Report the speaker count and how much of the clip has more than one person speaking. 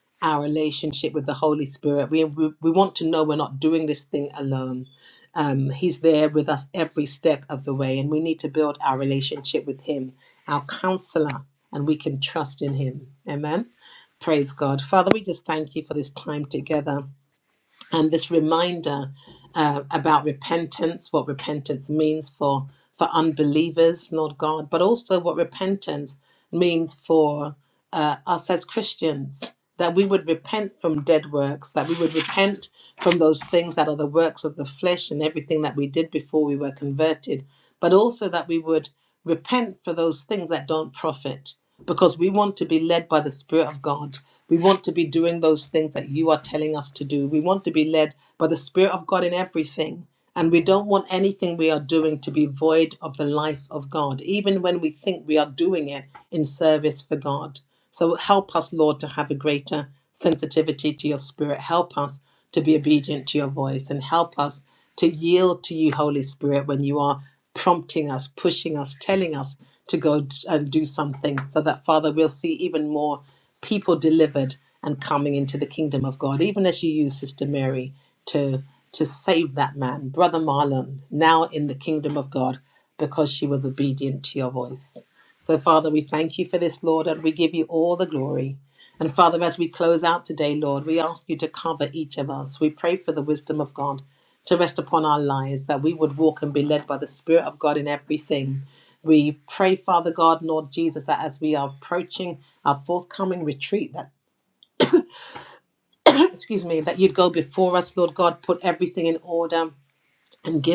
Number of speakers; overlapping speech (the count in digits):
1, no overlap